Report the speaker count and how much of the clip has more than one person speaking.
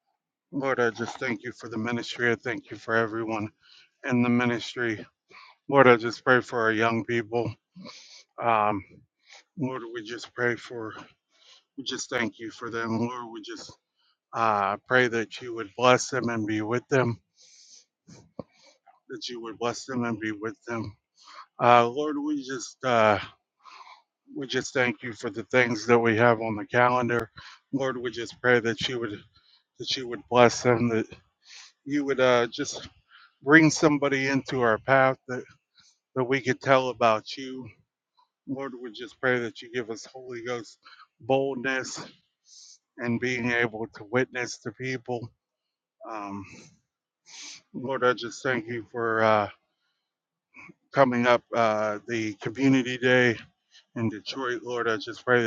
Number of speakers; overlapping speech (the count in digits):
1, no overlap